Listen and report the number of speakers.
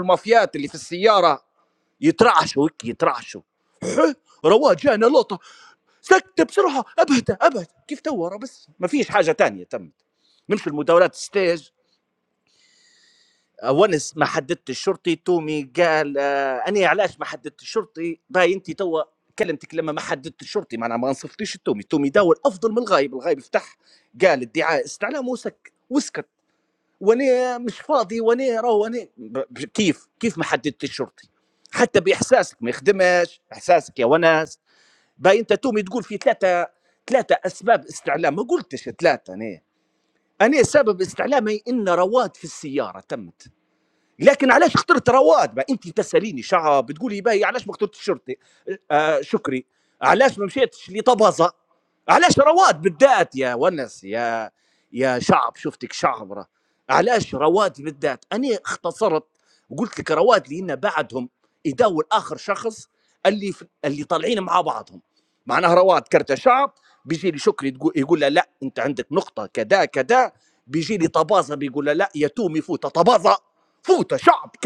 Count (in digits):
1